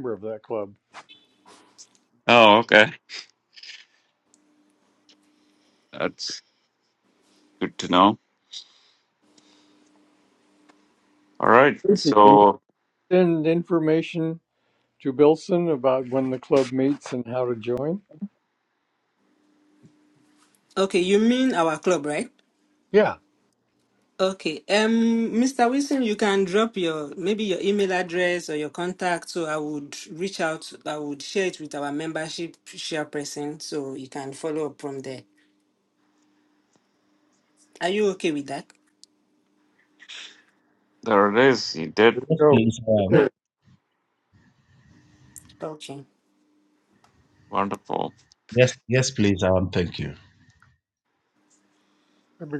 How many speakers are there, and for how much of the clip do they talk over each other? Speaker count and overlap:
4, about 2%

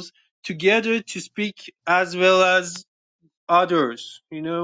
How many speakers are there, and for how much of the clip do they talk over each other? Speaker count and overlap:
1, no overlap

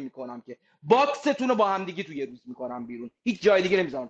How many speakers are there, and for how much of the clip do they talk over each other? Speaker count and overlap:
1, no overlap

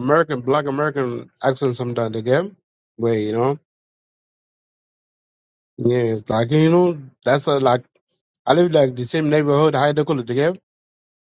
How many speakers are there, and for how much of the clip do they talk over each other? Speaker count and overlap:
1, no overlap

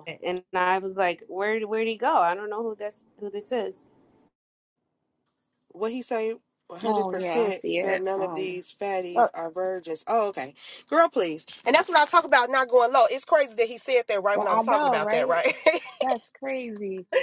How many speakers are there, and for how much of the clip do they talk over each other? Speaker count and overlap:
3, about 17%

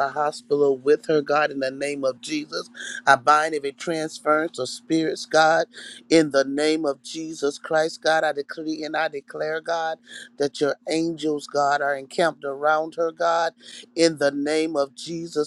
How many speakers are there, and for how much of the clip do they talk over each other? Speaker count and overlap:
1, no overlap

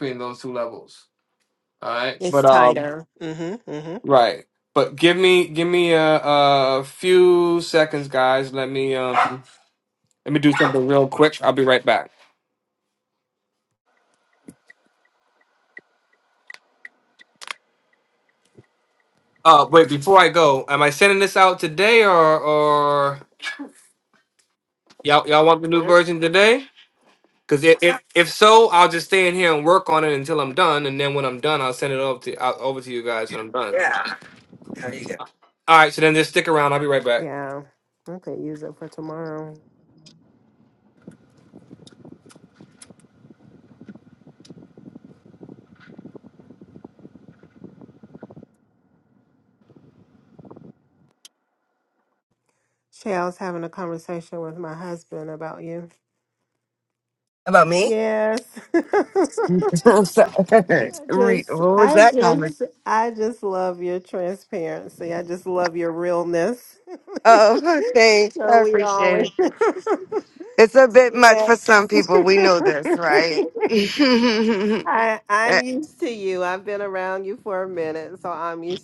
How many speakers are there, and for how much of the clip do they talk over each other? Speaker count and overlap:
3, about 5%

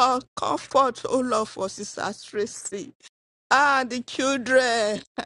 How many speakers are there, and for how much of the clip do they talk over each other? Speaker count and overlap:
1, no overlap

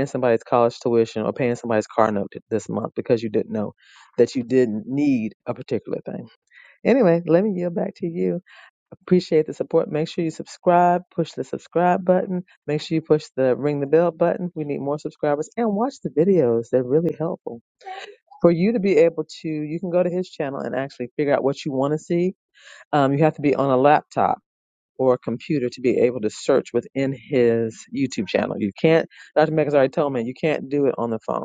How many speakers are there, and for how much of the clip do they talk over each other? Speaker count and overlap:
1, no overlap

